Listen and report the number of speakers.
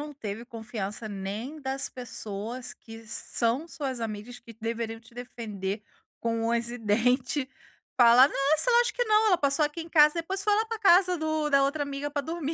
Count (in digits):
1